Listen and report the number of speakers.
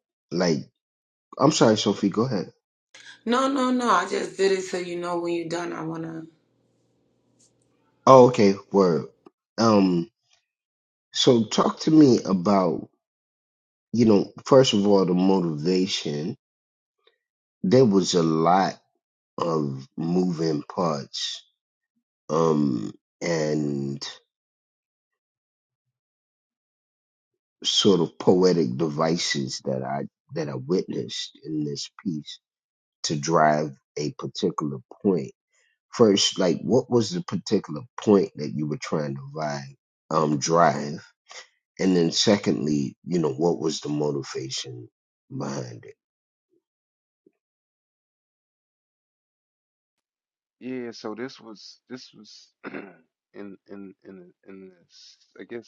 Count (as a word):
three